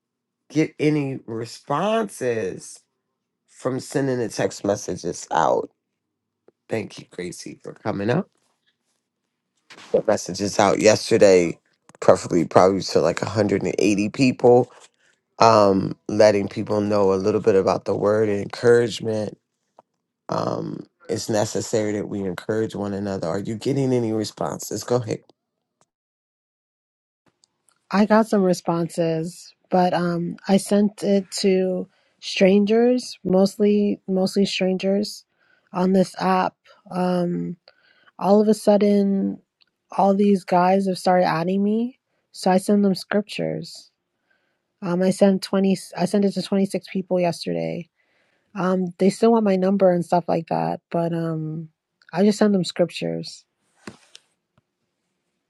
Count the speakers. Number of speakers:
2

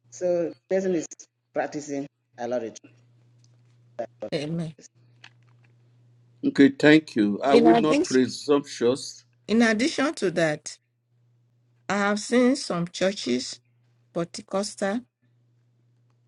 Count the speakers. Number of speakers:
3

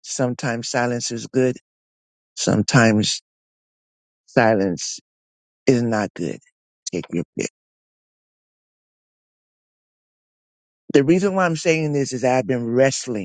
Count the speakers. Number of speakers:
1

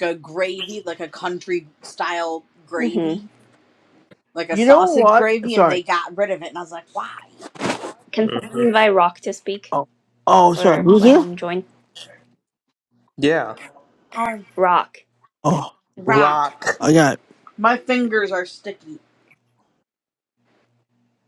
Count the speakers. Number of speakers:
4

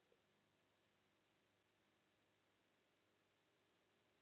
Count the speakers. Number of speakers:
0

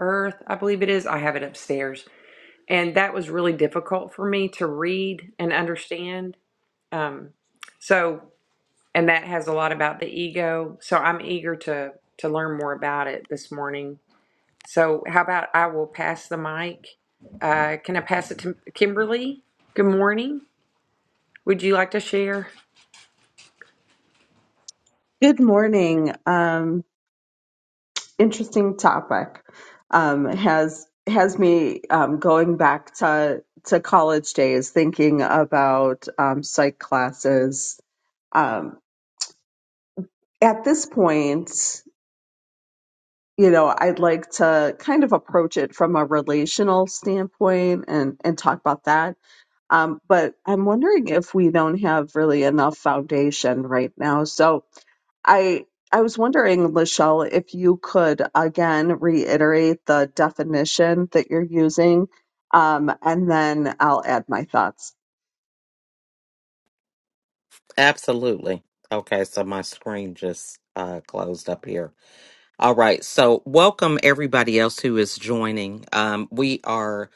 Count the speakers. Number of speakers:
3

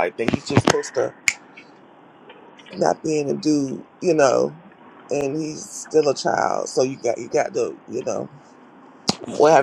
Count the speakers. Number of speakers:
1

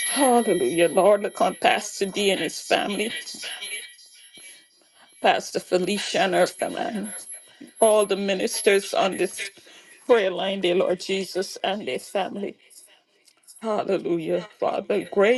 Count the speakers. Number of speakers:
1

